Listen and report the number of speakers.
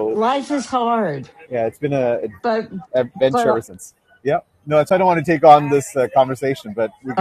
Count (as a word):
two